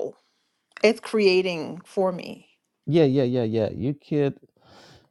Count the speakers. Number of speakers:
2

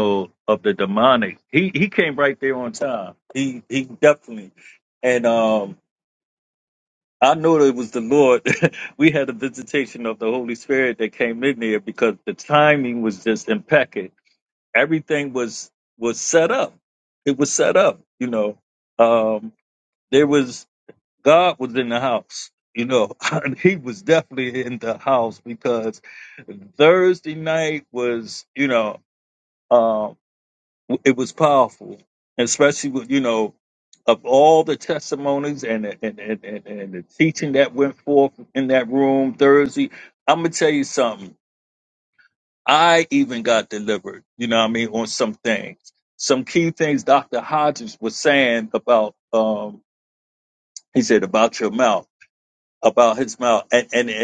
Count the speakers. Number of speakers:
1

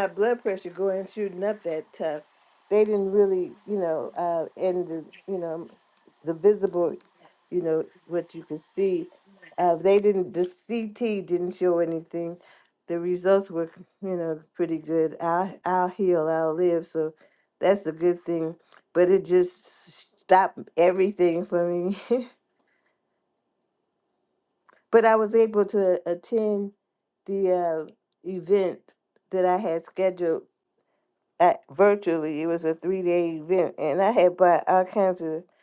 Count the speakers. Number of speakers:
1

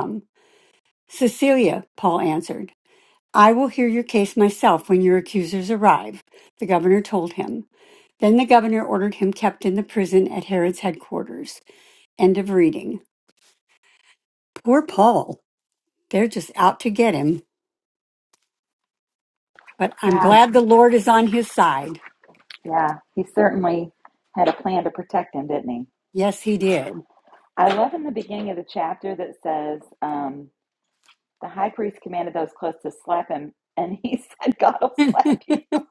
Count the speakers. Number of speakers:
2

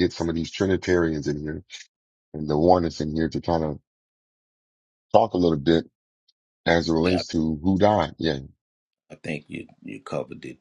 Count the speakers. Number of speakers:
2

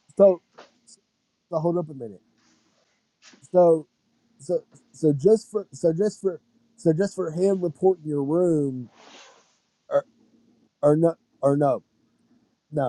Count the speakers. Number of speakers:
1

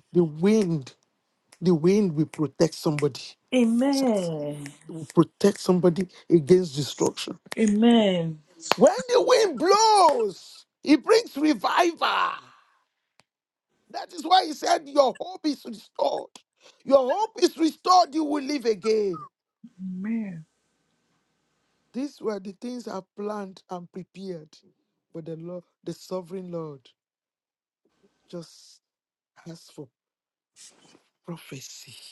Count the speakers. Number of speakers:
2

